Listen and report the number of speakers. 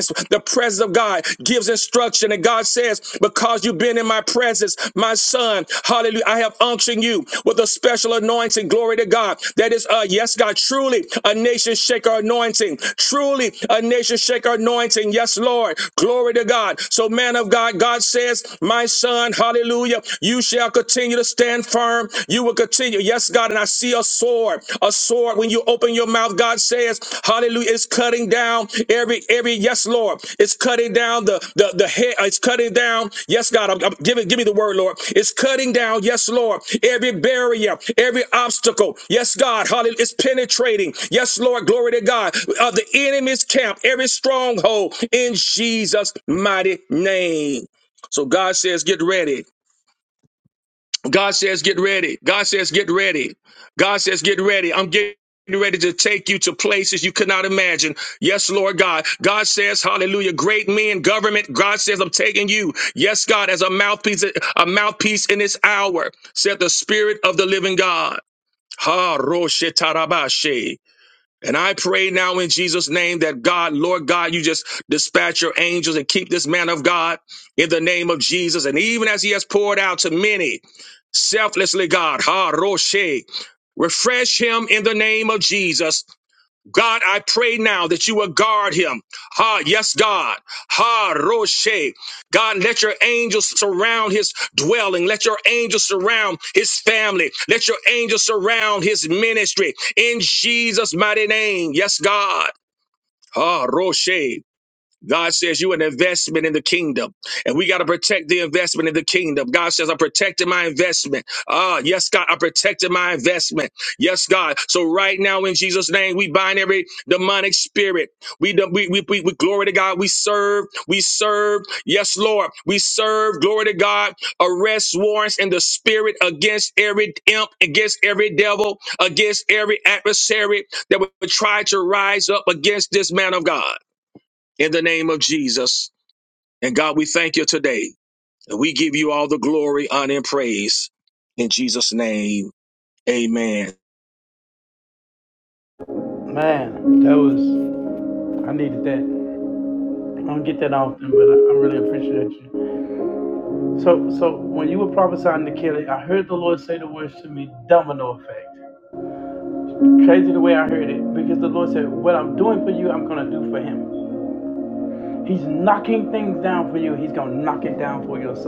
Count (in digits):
2